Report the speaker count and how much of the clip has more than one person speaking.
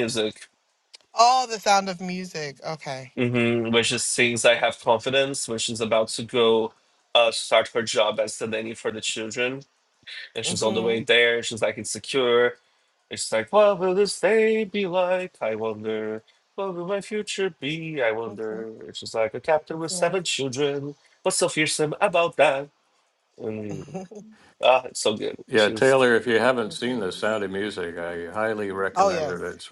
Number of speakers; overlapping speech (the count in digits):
3, about 9%